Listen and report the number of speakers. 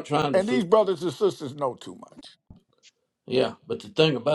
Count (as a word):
two